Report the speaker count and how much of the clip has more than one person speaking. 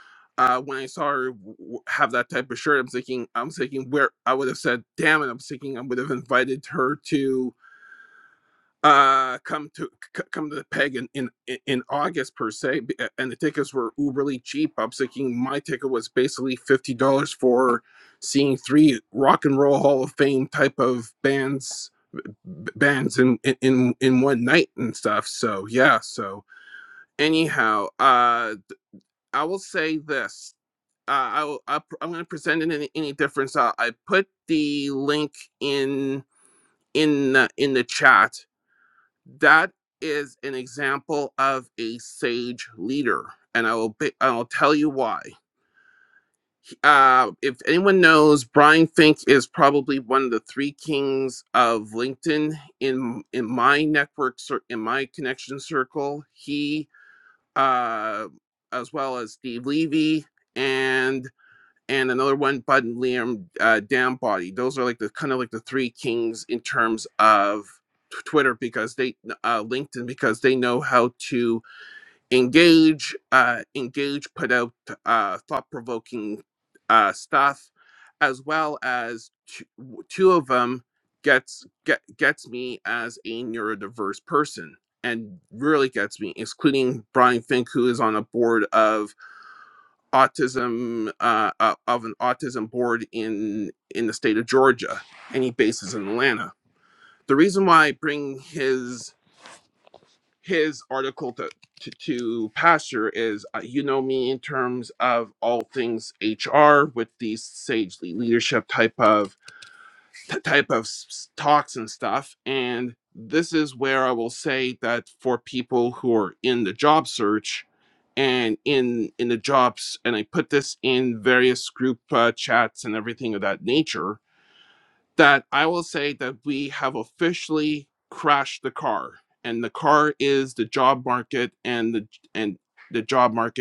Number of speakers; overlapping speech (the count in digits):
1, no overlap